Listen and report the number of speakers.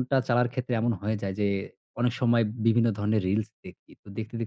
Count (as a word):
one